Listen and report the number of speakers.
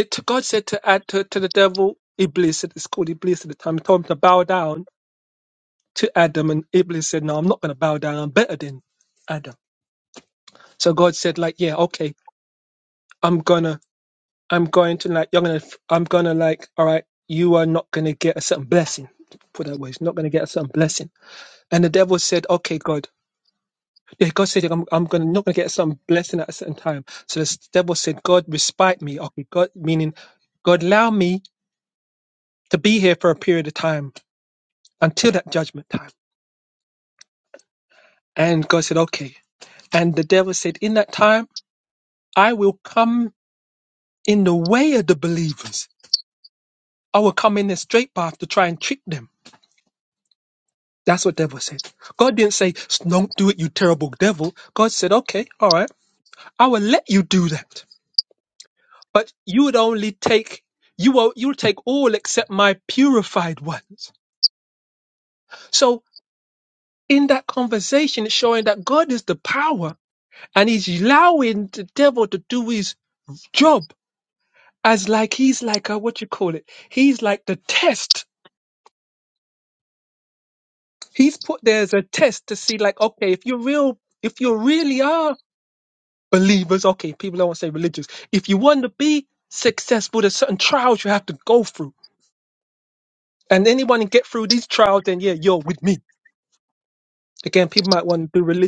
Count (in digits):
1